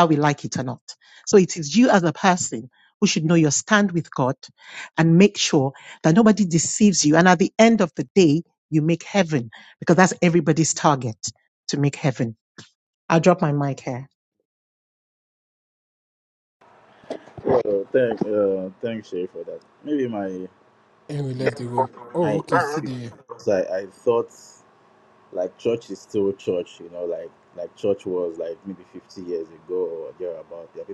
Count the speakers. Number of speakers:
three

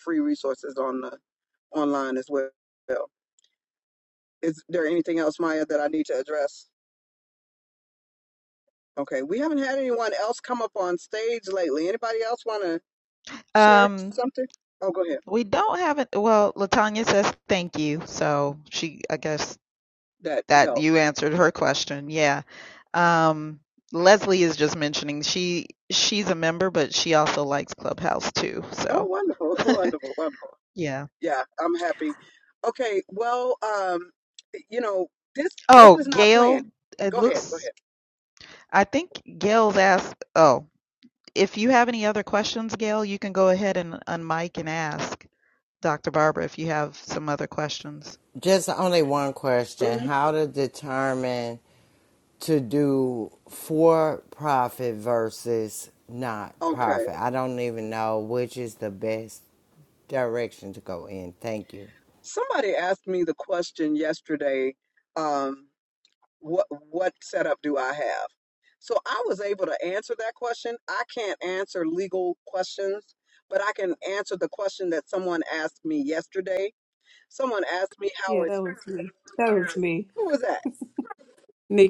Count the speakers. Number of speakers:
four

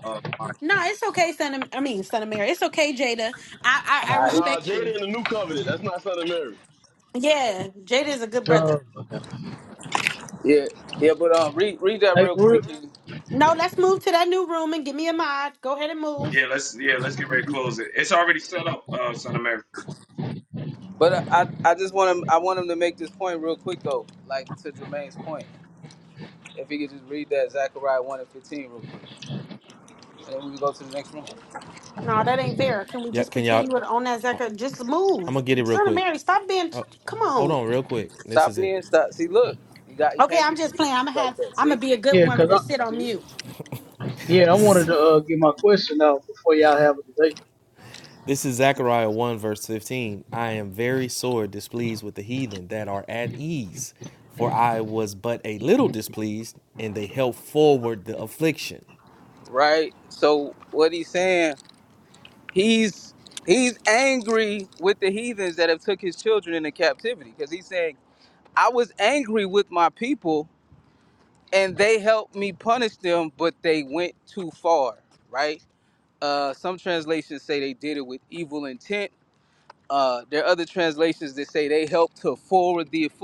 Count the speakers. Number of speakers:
six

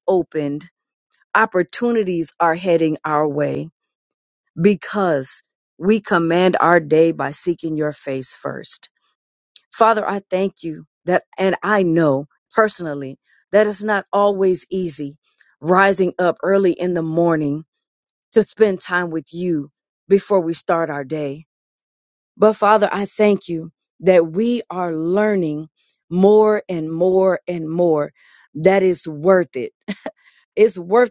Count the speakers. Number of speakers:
one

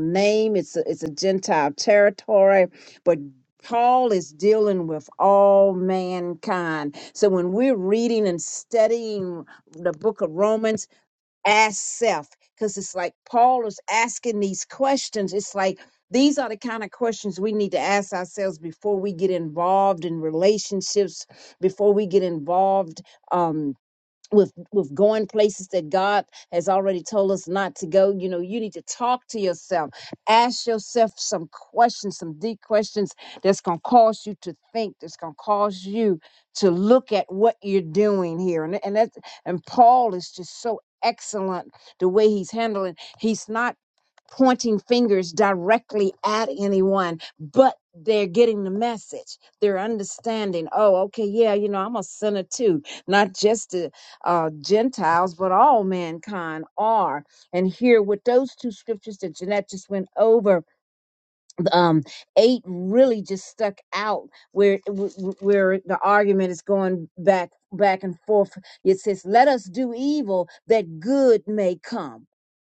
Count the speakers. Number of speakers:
one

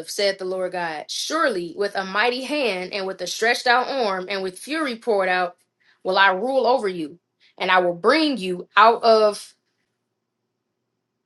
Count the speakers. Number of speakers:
one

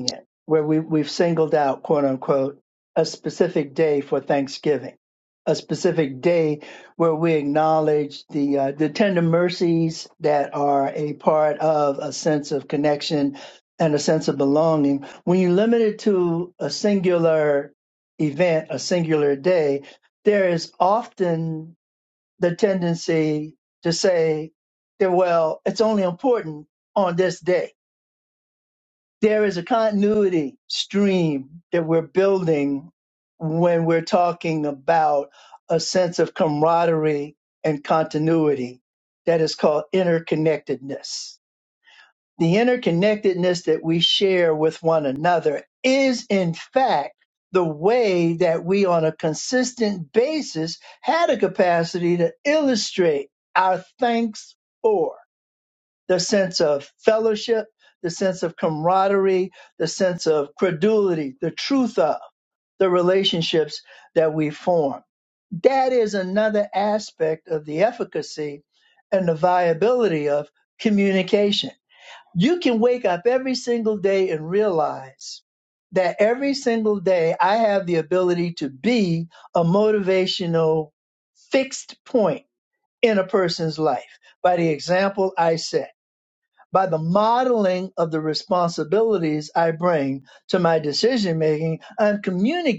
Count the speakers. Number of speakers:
one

